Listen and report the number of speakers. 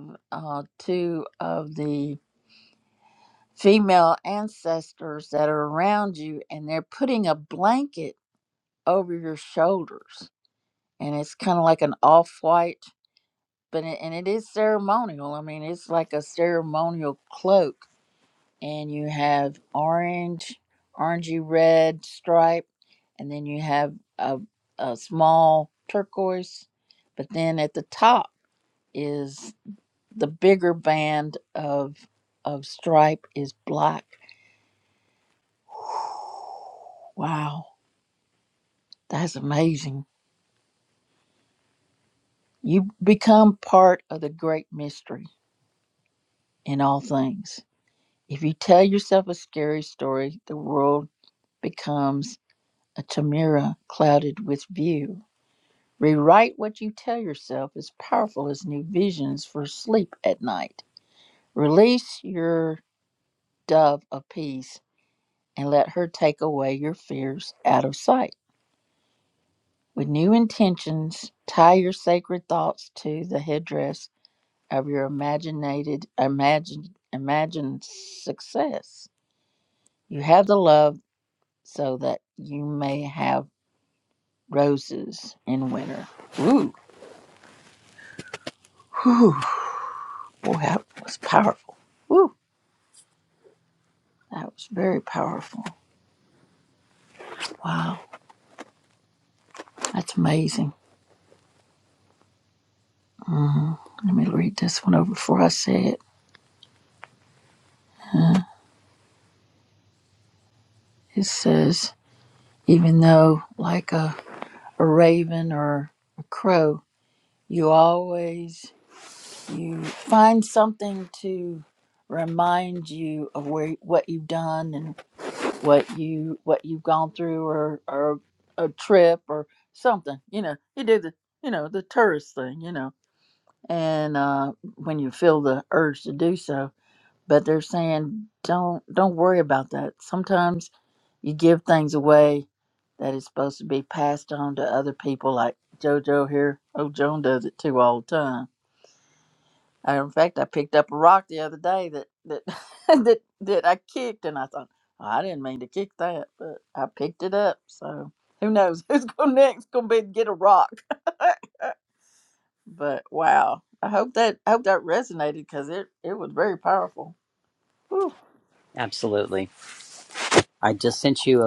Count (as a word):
two